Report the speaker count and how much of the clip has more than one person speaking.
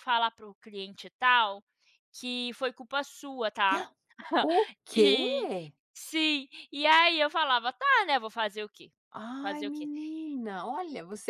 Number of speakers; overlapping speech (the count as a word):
two, about 8%